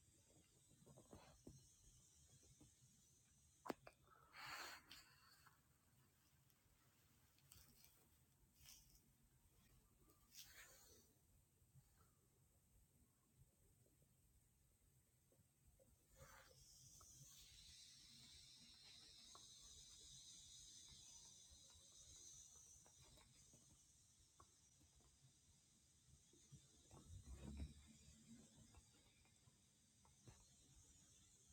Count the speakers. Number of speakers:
0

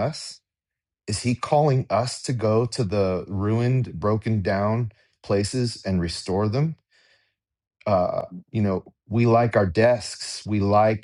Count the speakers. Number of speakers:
1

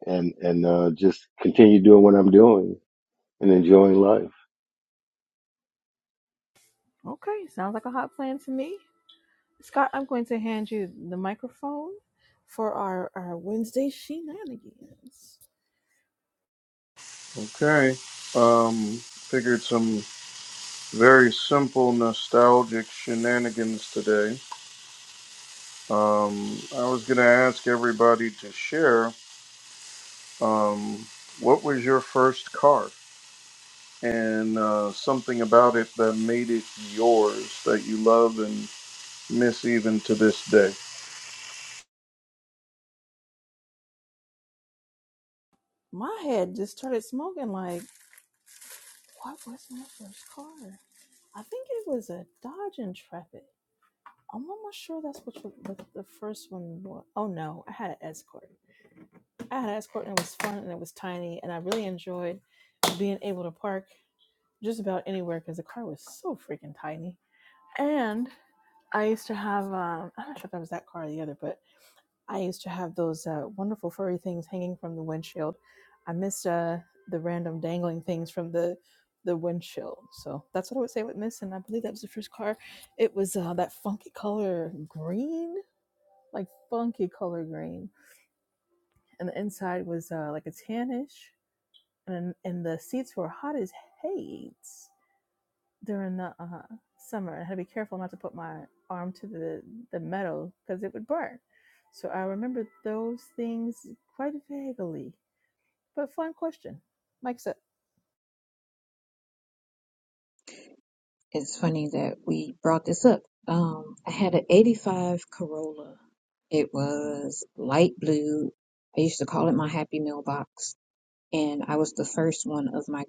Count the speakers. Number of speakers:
4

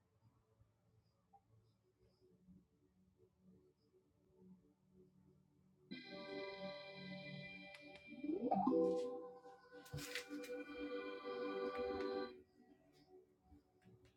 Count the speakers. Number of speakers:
0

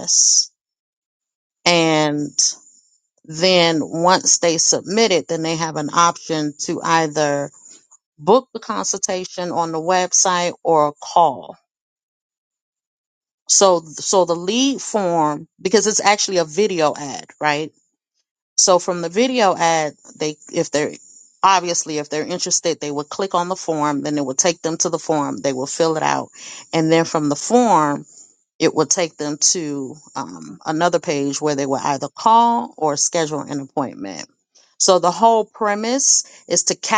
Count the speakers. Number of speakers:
1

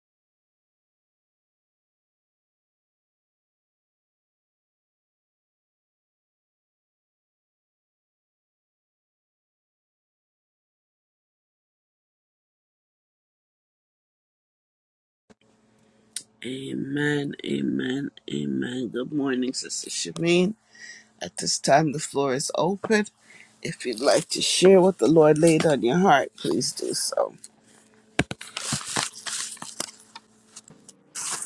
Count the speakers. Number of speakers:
1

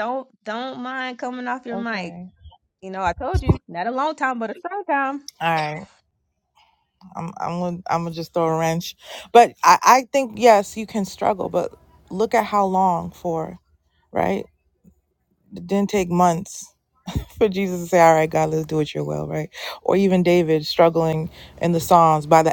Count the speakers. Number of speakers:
2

